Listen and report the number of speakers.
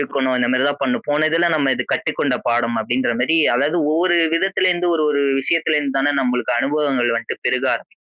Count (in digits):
1